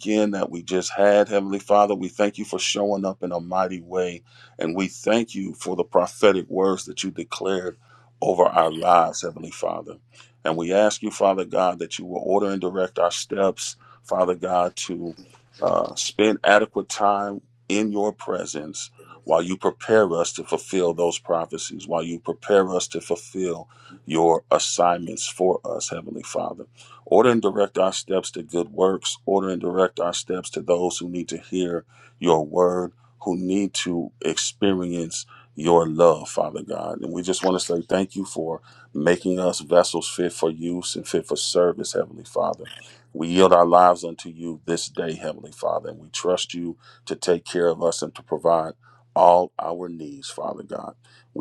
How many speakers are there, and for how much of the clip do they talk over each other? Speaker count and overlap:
one, no overlap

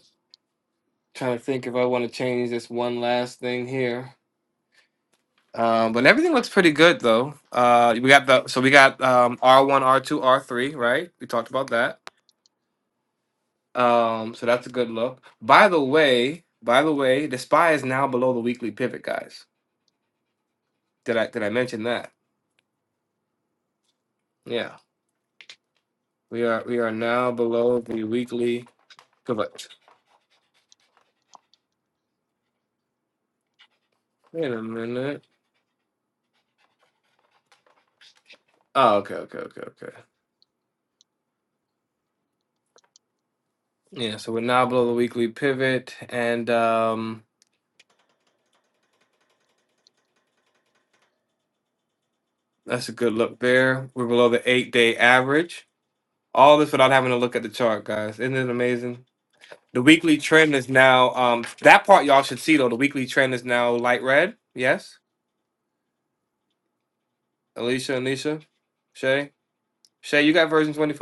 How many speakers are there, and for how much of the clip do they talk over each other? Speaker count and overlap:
one, no overlap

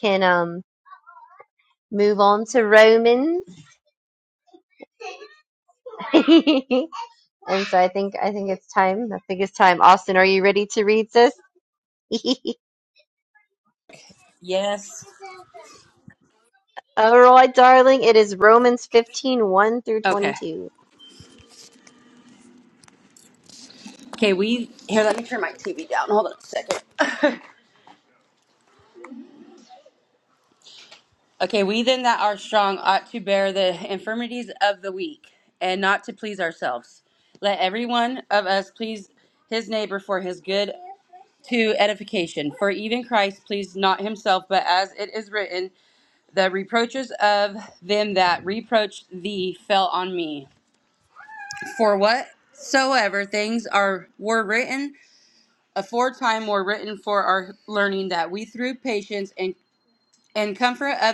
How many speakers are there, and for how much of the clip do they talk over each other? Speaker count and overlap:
two, about 1%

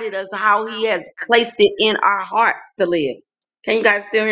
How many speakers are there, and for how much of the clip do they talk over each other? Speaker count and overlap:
one, no overlap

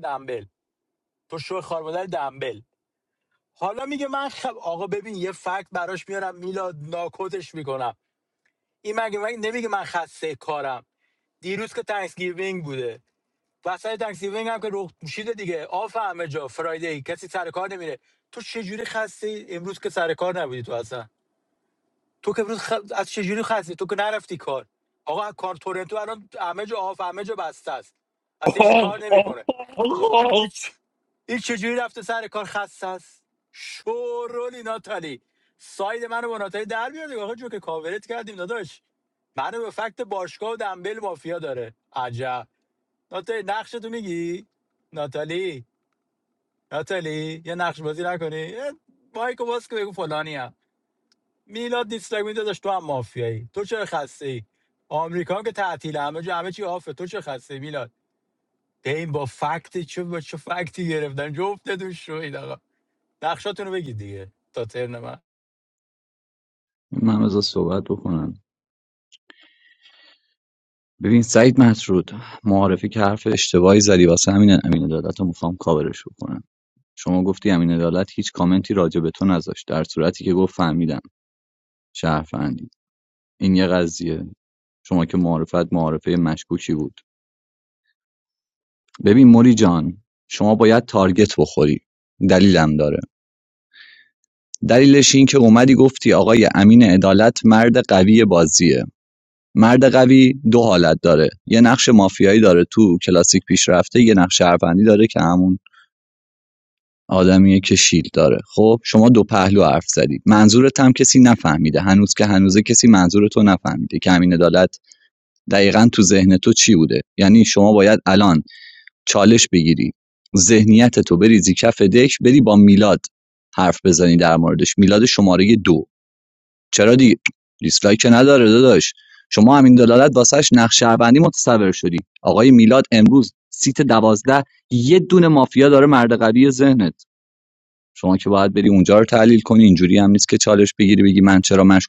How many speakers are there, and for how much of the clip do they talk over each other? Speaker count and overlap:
two, no overlap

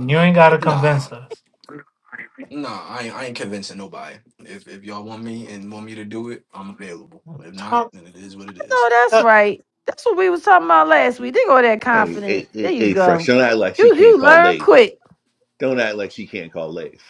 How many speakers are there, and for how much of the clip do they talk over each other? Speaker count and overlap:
four, about 19%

